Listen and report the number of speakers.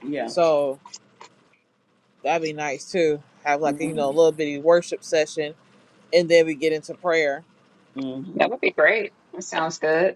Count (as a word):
three